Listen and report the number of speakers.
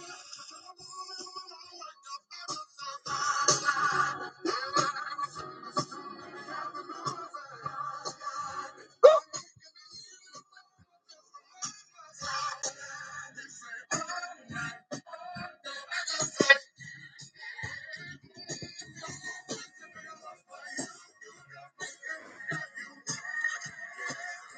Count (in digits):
0